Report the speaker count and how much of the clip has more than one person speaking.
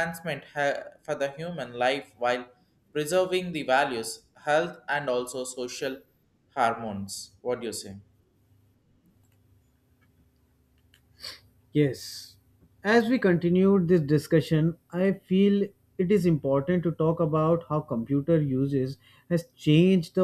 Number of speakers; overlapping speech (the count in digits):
2, no overlap